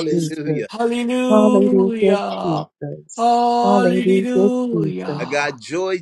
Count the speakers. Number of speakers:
3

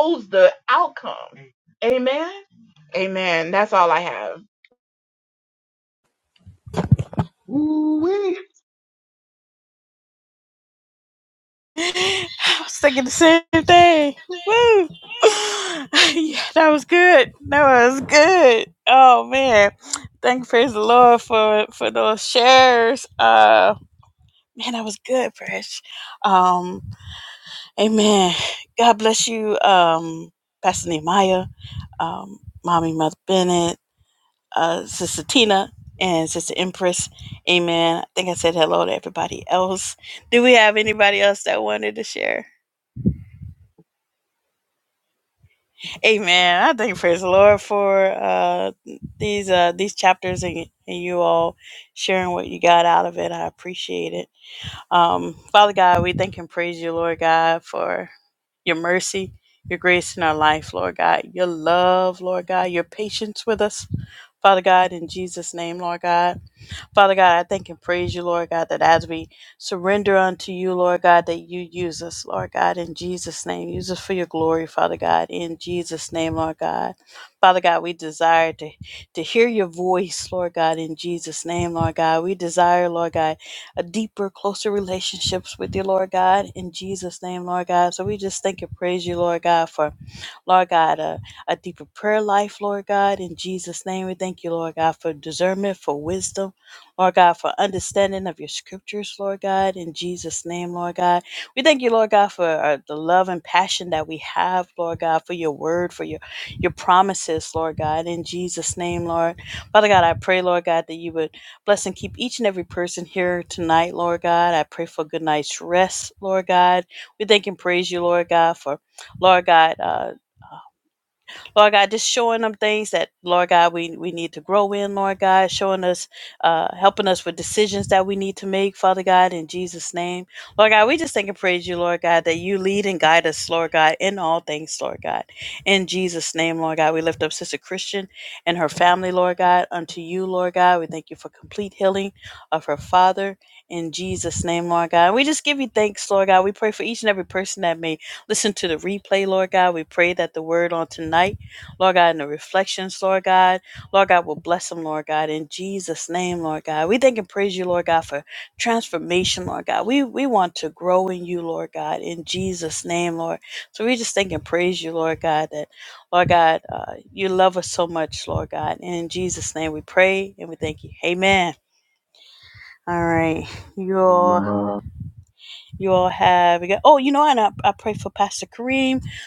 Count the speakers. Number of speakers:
3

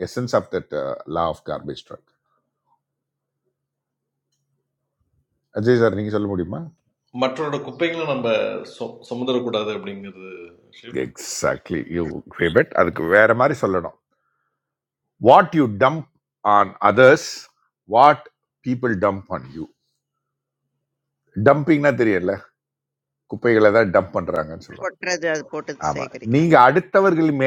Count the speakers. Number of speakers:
3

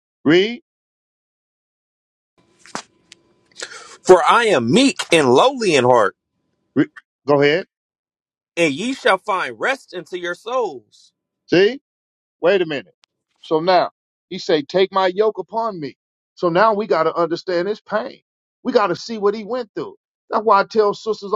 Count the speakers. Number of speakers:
2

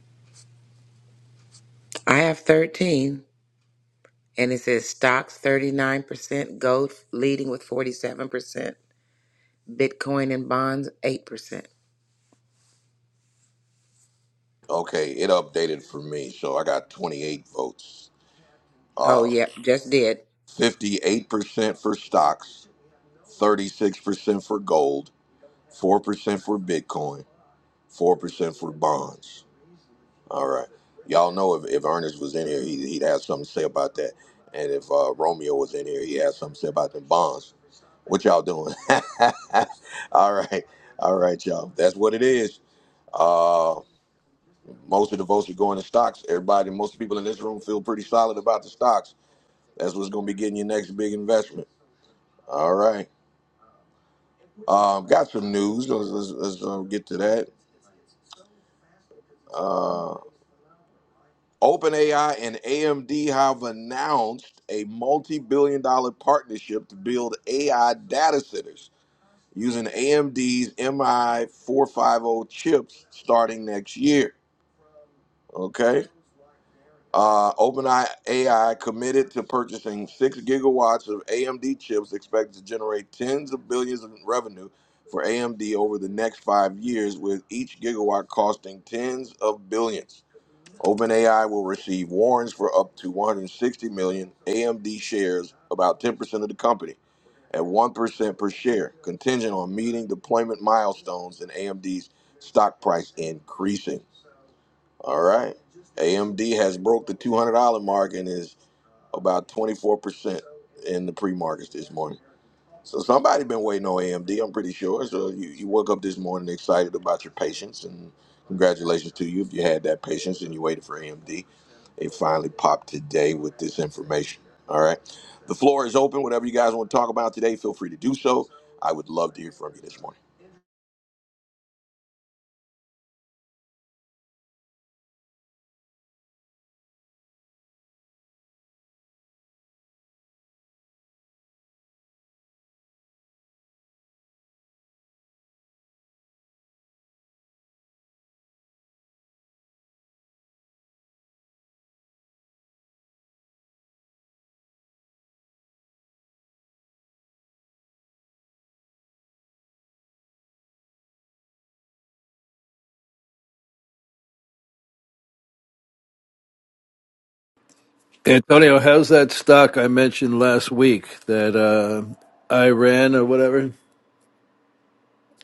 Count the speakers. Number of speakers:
3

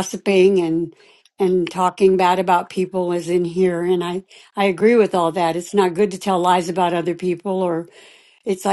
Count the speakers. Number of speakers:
1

